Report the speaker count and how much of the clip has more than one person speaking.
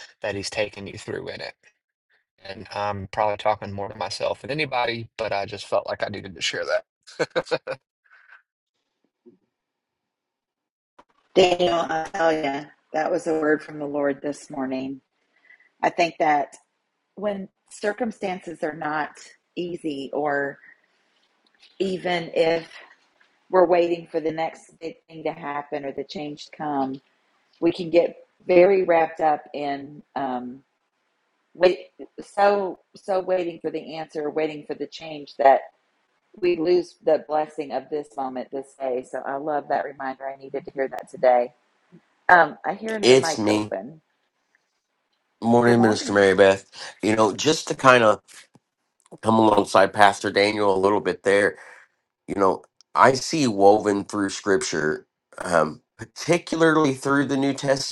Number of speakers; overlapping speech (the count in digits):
3, about 2%